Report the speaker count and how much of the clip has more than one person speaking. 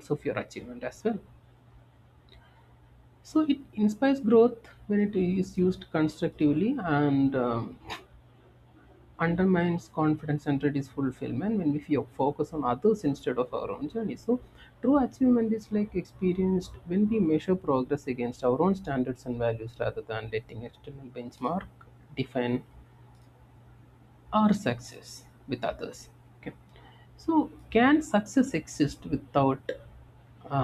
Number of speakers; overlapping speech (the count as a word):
one, no overlap